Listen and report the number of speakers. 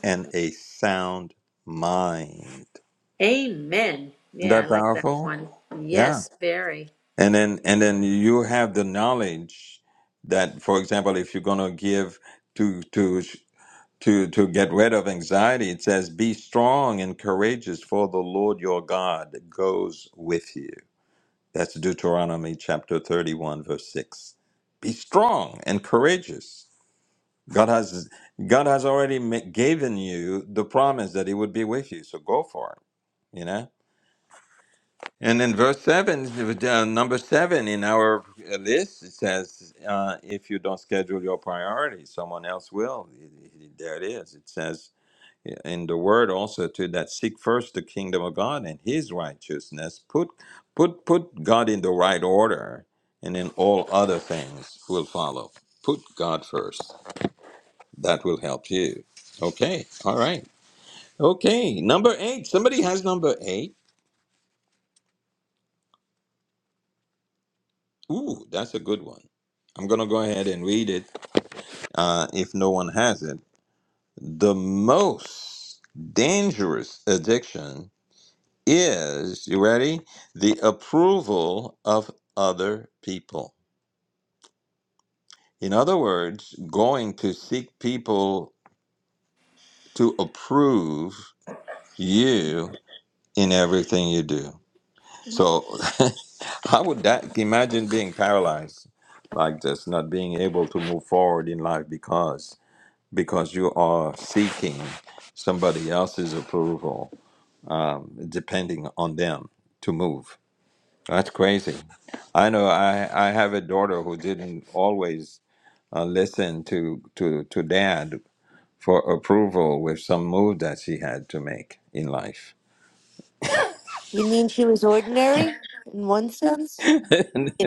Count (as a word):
three